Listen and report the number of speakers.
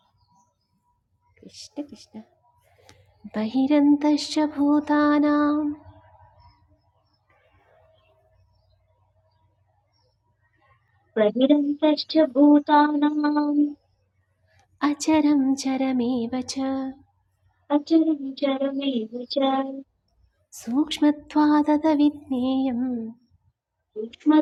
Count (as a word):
two